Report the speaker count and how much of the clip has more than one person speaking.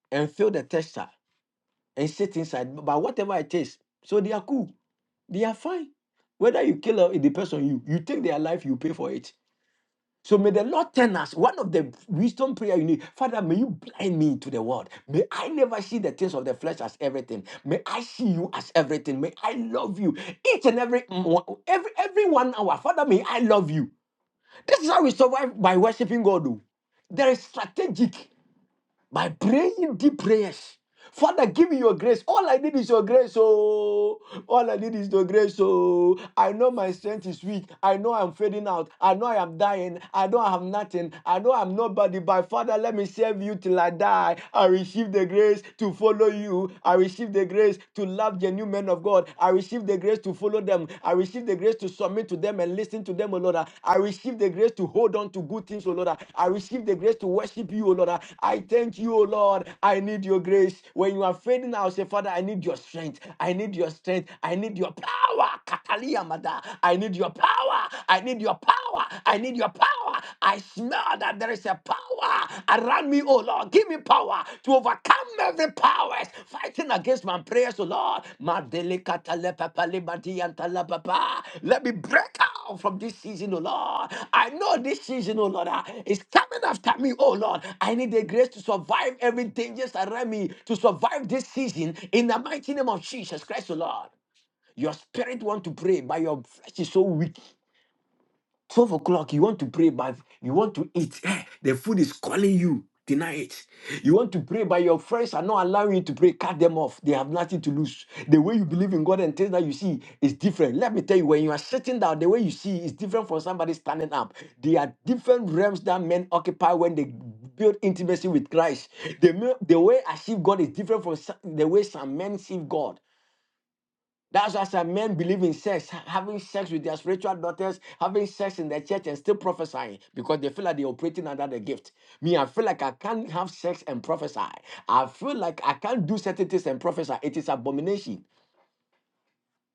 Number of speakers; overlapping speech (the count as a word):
one, no overlap